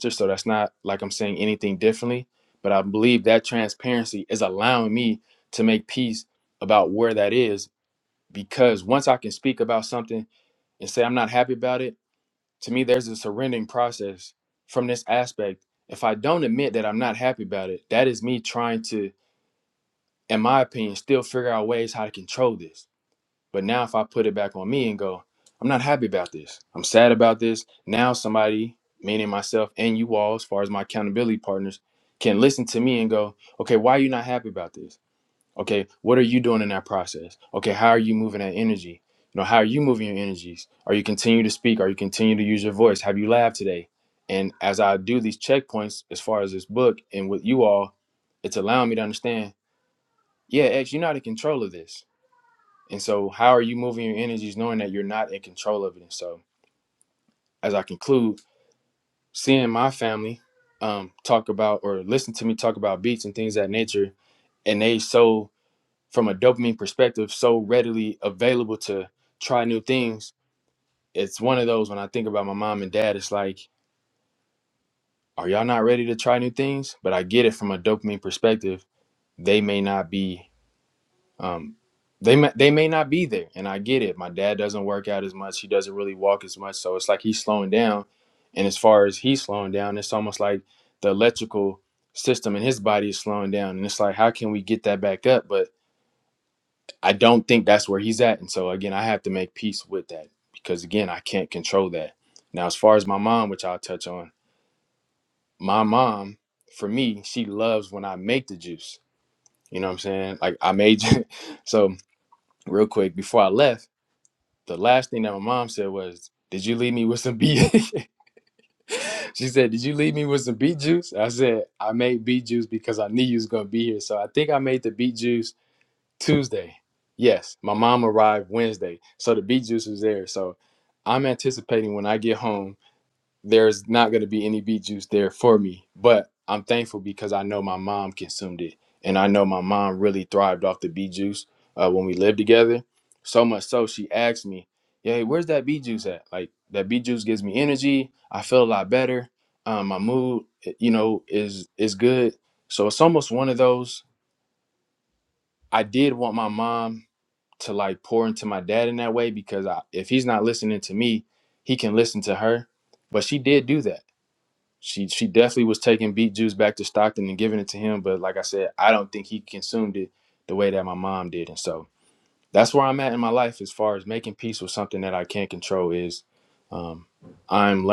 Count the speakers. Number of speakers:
1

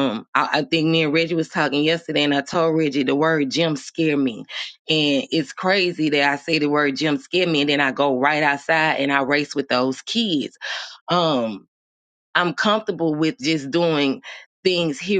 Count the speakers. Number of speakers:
1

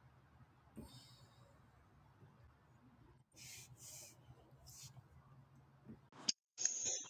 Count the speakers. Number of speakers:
0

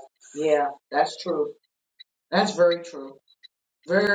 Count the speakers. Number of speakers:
1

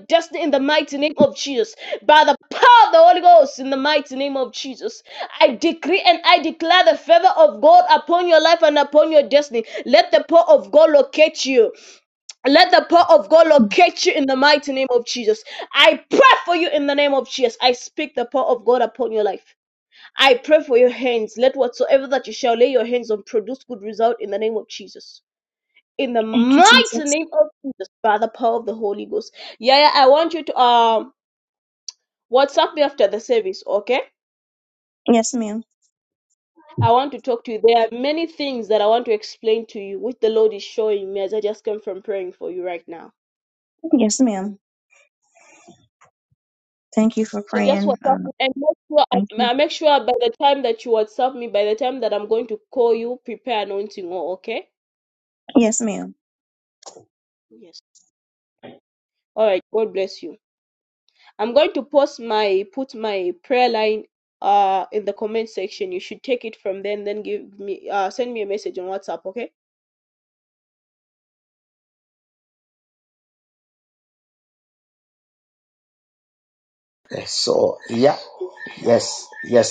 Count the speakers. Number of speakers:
3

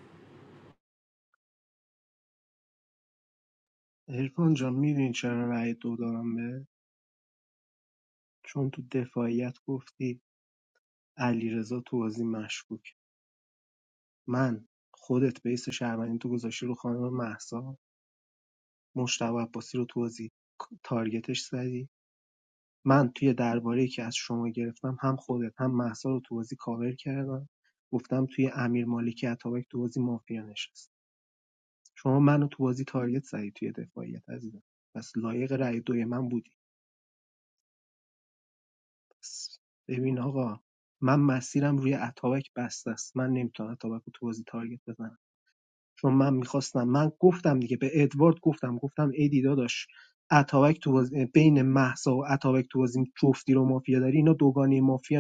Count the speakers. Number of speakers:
1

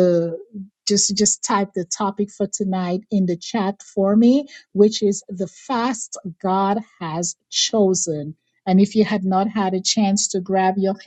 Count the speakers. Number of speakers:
1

